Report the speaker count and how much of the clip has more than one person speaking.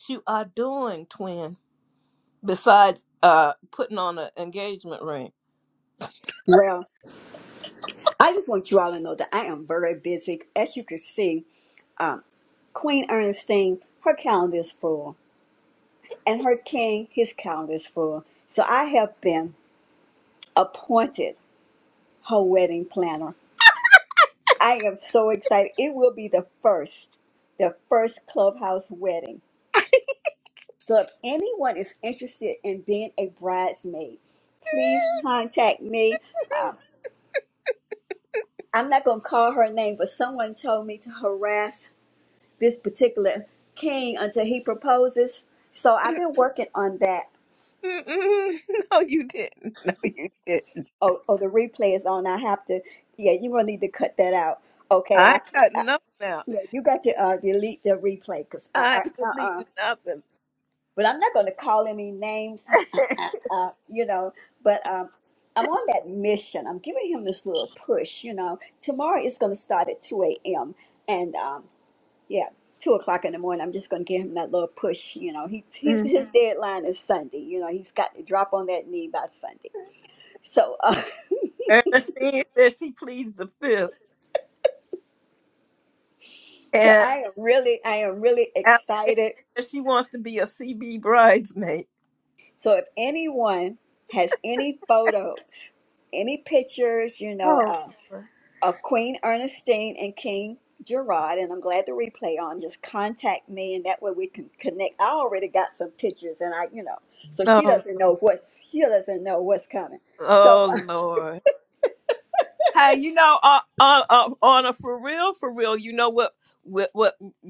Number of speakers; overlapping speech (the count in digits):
2, about 3%